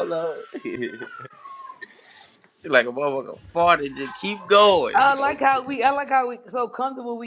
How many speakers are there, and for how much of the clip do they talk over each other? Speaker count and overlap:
2, about 7%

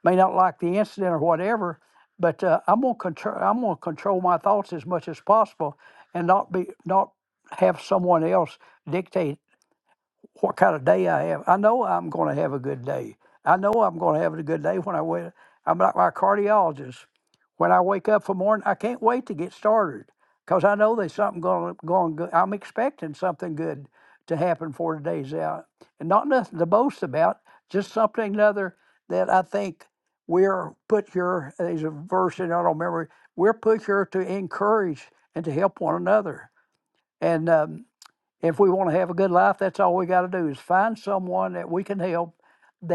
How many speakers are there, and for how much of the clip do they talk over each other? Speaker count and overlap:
1, no overlap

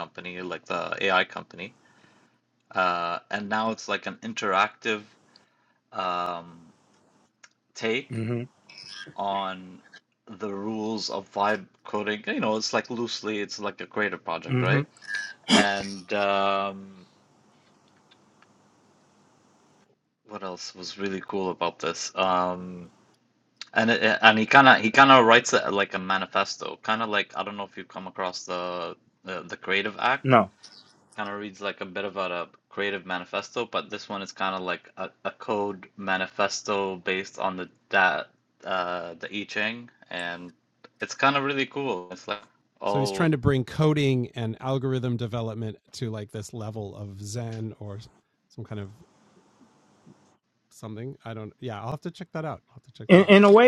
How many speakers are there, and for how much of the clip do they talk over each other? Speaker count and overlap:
3, about 2%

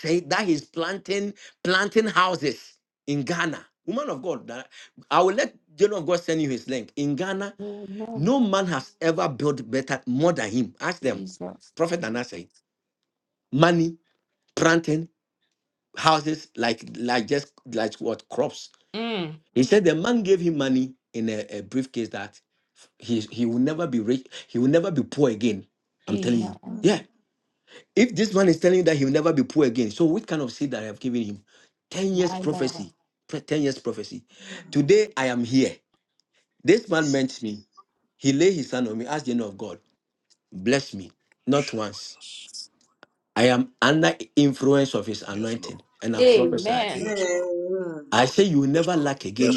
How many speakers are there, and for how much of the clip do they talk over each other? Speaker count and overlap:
3, about 5%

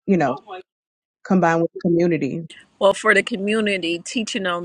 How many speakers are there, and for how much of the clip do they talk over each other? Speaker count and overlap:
2, no overlap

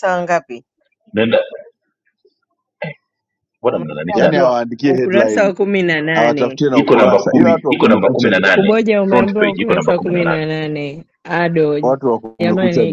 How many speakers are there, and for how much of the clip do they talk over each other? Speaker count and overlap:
3, about 46%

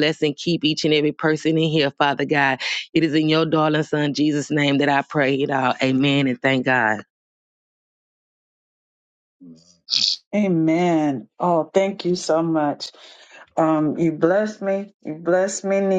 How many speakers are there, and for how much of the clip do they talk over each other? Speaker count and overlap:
2, no overlap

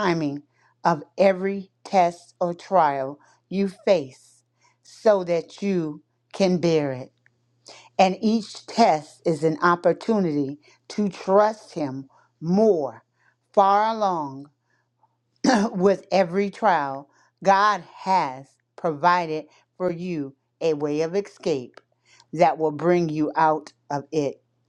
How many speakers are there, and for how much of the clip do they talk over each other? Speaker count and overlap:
1, no overlap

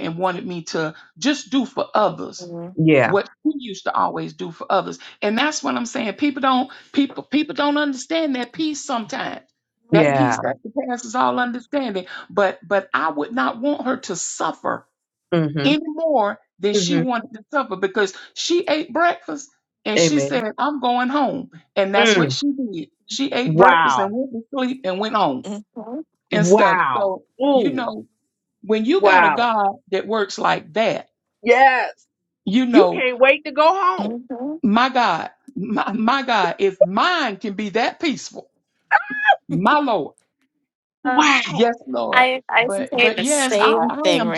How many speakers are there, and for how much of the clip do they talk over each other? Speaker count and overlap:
3, about 15%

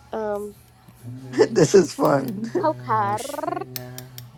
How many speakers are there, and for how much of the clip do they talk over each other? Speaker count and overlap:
3, about 31%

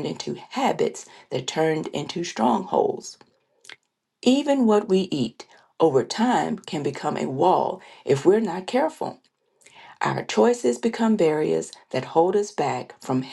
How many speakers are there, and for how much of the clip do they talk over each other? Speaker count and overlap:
1, no overlap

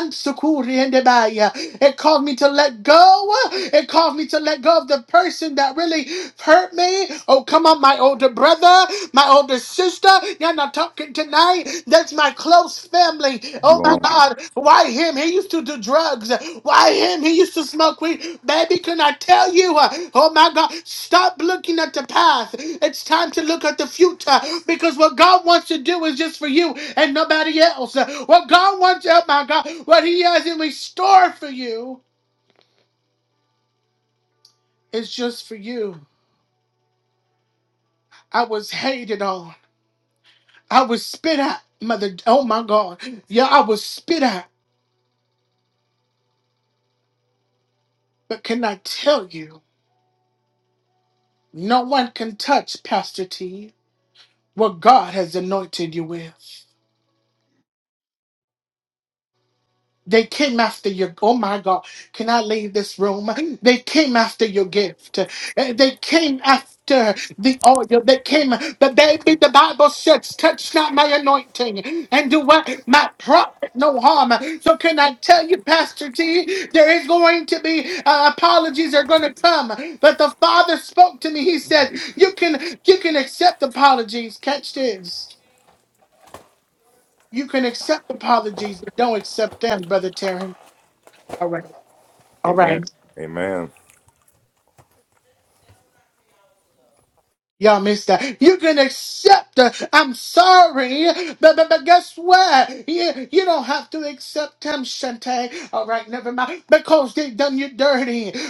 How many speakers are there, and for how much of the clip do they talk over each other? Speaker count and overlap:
2, about 1%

